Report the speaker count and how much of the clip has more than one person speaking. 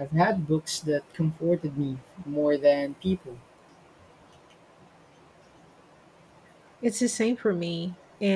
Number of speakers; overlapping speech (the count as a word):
two, no overlap